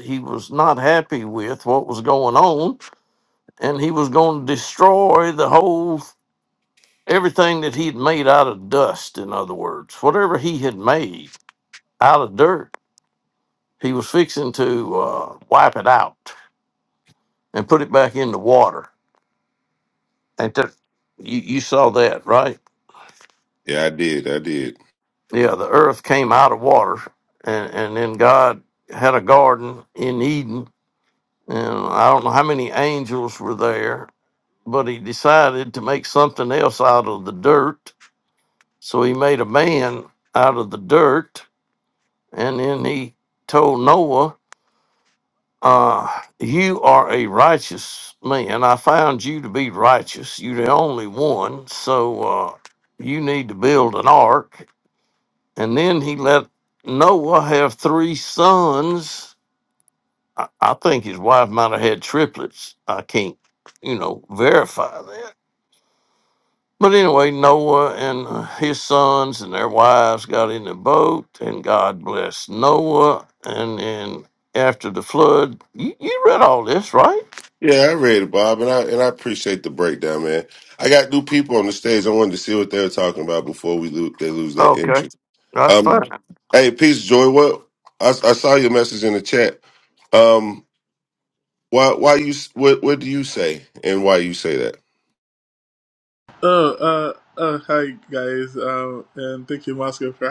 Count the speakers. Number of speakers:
3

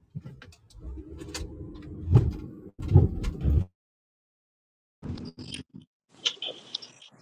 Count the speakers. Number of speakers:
0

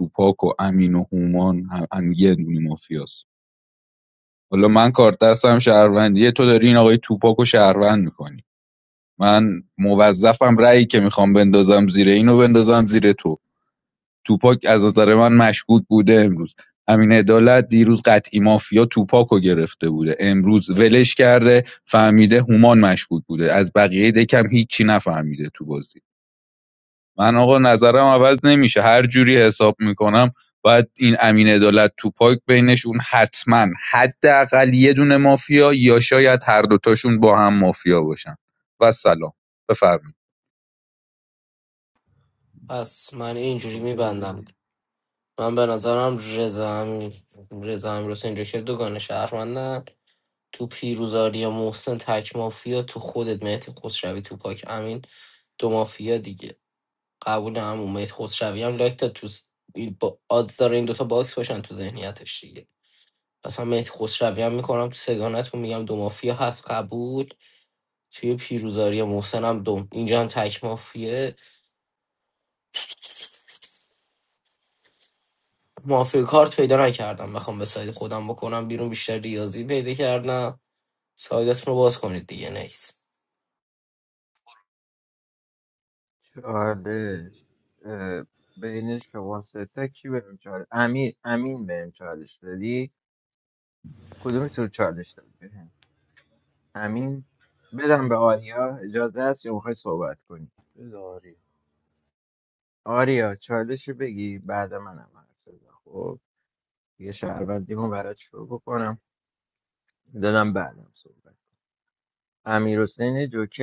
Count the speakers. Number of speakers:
4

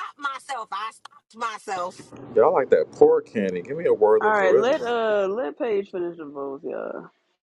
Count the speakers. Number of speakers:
3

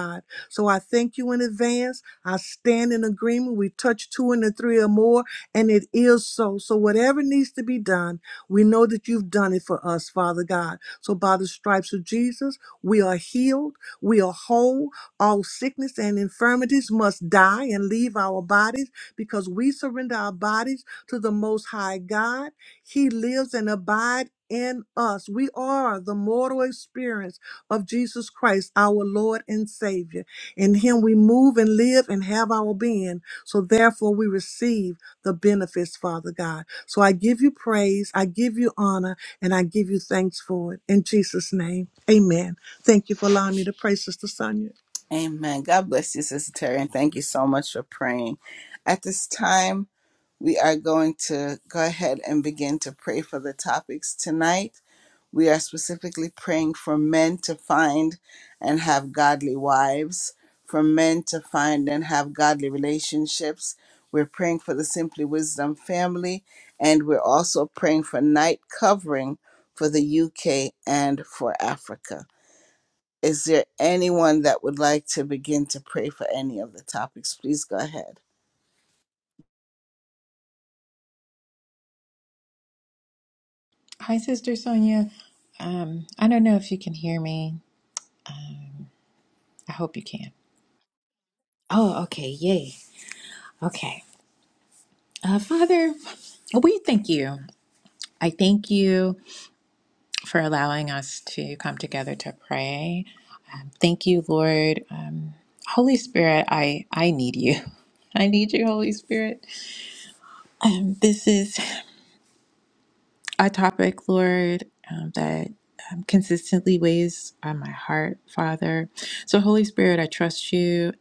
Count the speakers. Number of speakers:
3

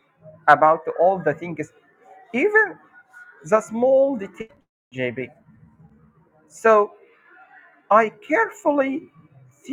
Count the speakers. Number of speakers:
1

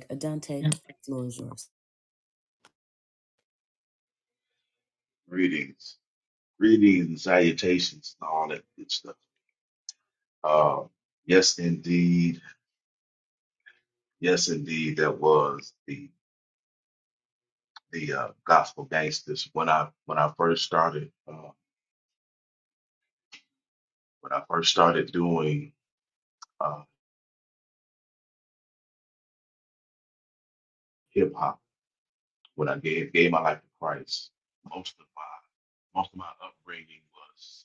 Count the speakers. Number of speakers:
2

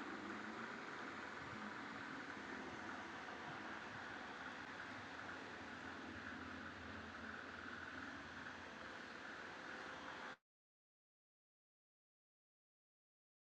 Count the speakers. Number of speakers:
0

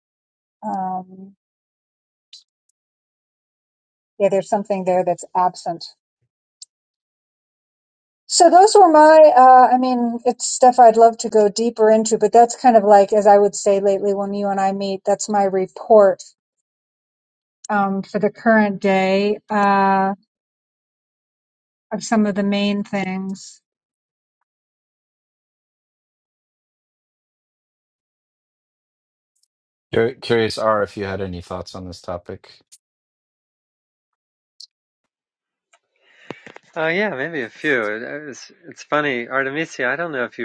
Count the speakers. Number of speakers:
3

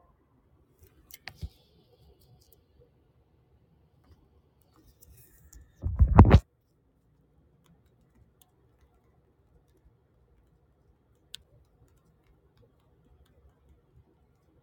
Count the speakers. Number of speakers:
0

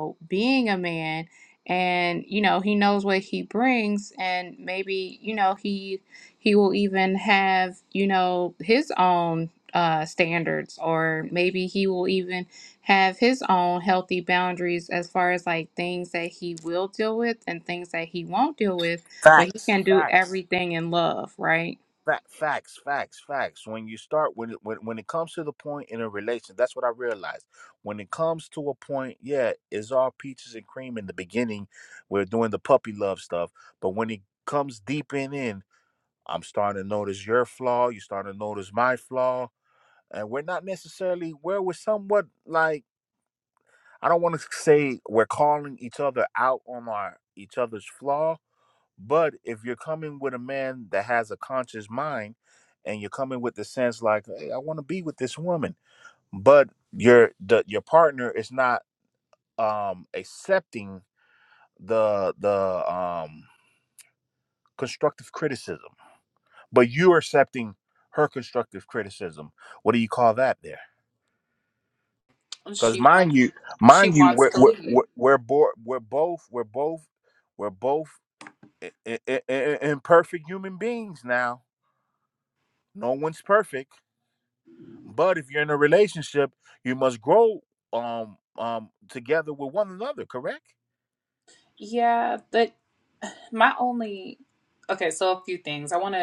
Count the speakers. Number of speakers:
3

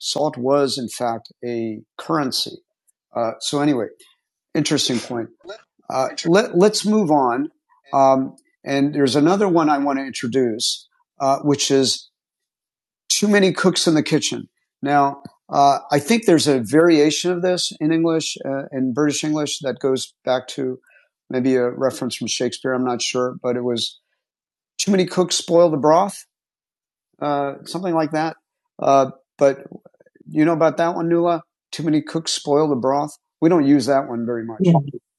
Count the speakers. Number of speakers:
1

